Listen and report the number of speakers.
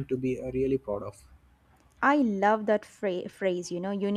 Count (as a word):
two